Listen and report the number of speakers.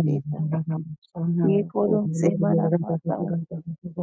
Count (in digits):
2